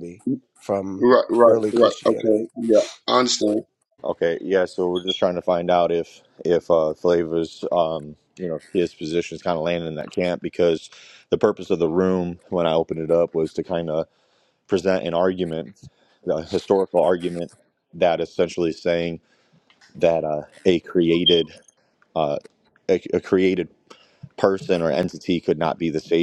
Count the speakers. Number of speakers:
three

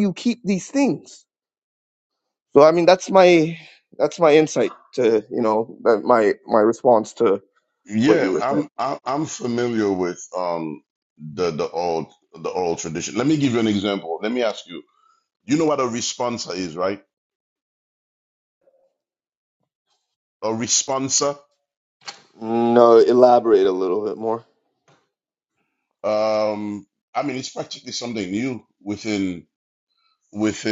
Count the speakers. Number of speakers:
two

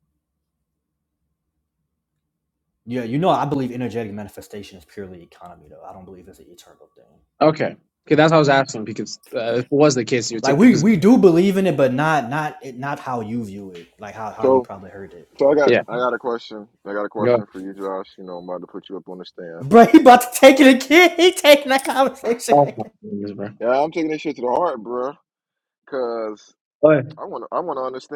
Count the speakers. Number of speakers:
three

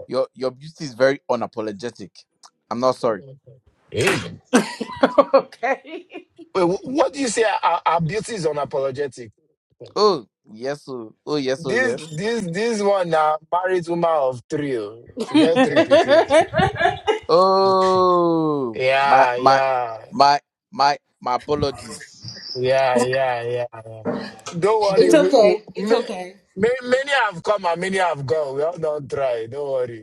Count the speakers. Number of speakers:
three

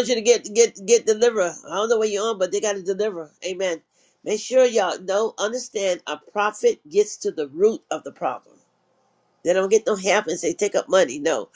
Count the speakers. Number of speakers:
one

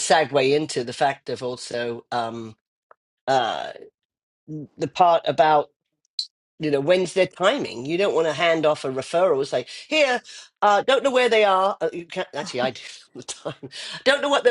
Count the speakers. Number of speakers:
one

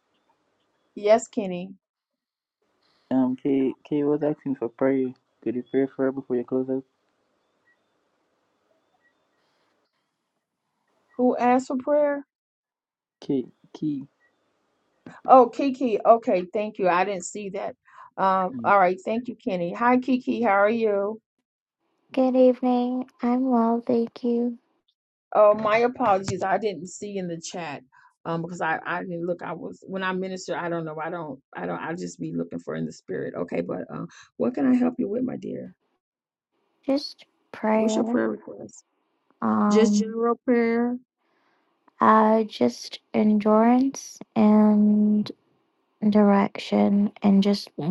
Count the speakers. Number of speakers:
three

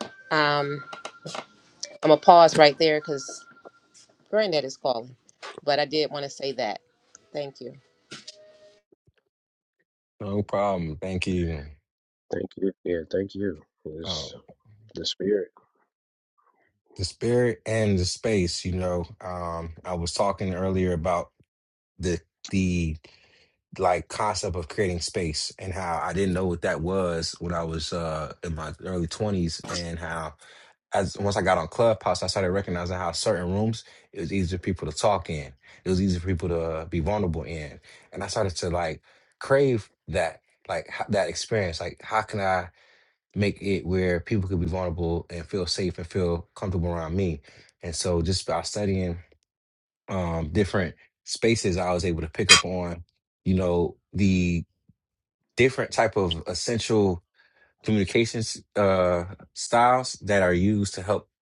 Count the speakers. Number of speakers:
three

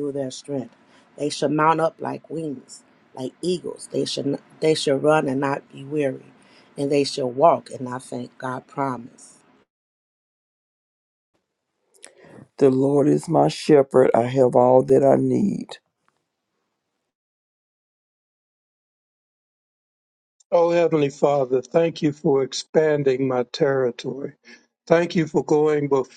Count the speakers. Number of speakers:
three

